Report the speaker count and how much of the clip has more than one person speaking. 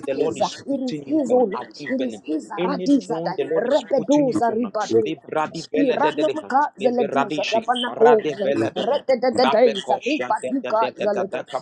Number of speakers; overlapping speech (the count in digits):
2, about 77%